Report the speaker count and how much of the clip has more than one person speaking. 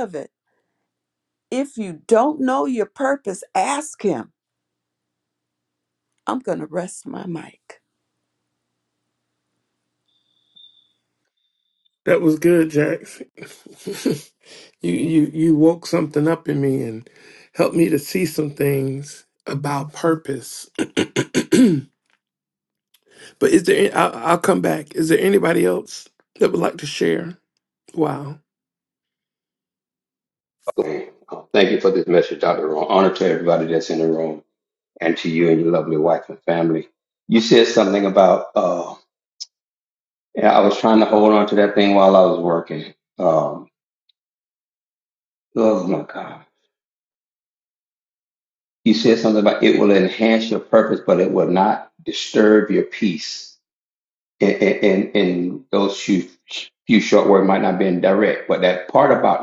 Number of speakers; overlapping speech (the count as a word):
three, no overlap